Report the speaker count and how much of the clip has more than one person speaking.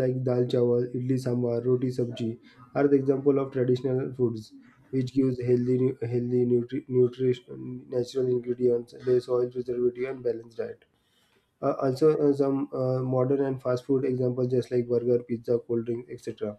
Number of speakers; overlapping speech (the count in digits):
1, no overlap